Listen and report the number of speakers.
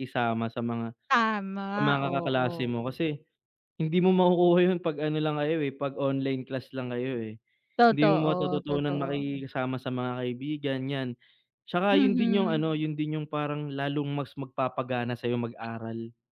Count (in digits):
2